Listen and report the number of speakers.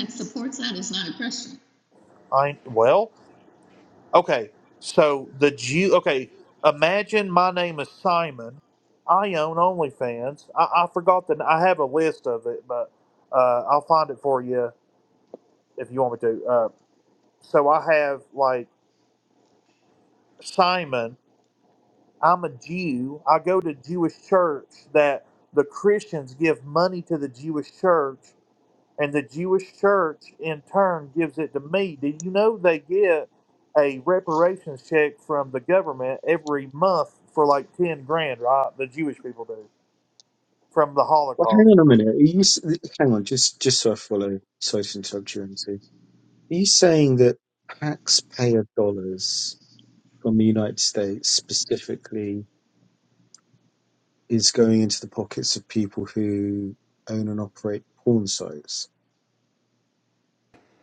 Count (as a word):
three